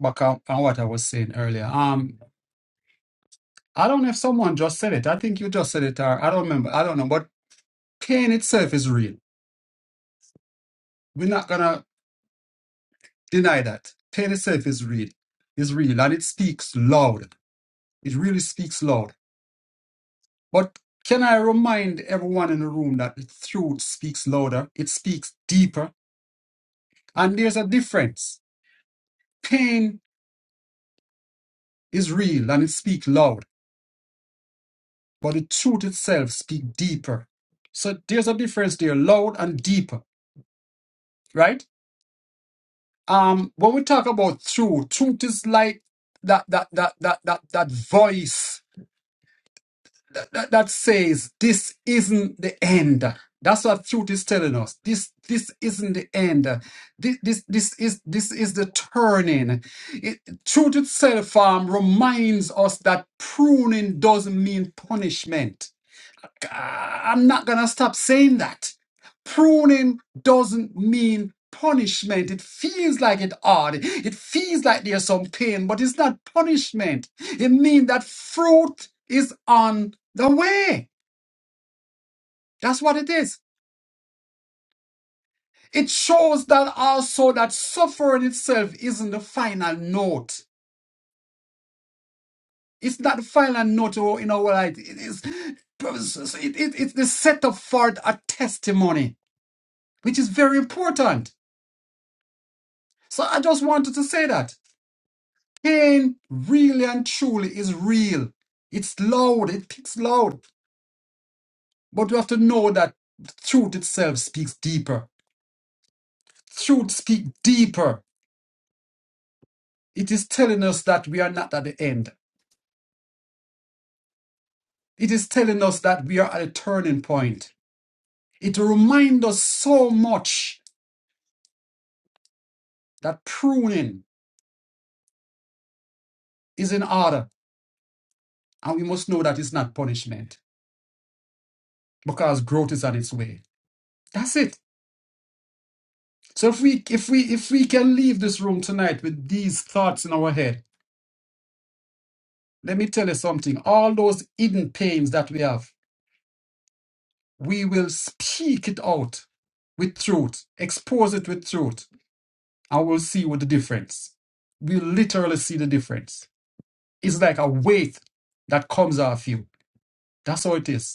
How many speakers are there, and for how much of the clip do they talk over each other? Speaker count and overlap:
one, no overlap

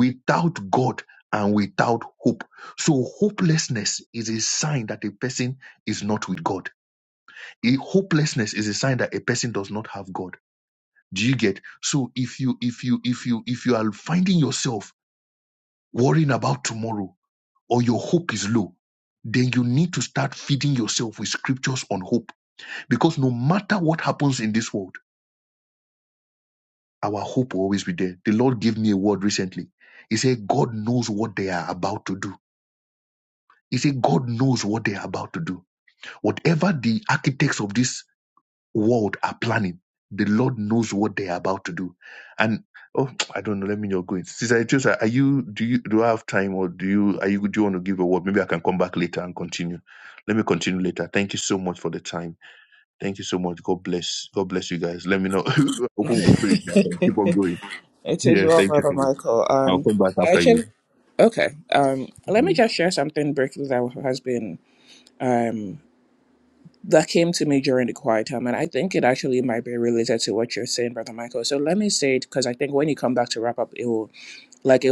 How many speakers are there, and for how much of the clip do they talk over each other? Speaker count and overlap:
two, about 3%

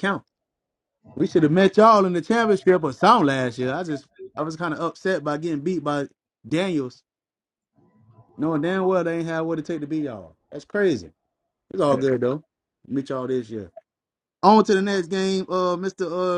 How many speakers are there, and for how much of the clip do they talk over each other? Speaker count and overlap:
one, no overlap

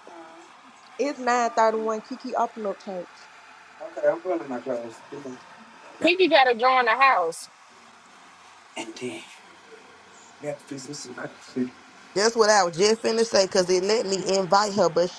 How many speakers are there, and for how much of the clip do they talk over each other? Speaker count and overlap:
four, no overlap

